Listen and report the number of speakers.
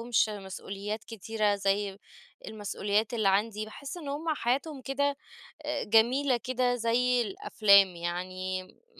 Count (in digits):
1